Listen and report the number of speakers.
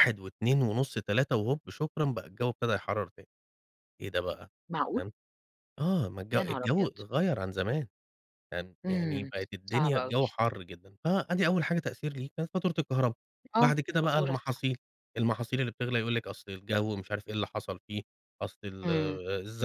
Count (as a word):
two